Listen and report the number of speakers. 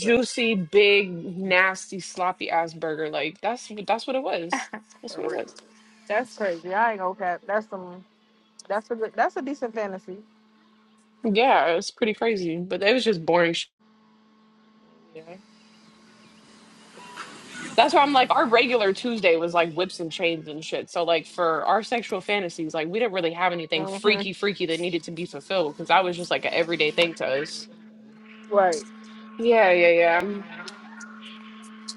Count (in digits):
2